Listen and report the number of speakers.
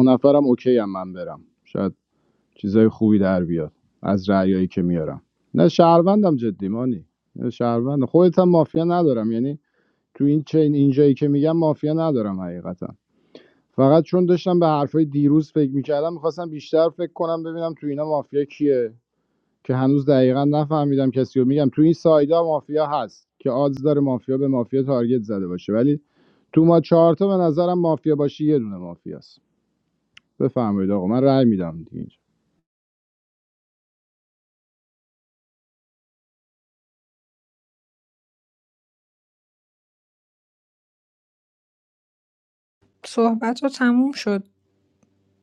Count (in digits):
2